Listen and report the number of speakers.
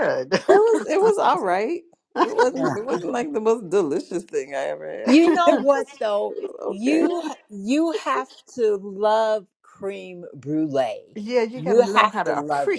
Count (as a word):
three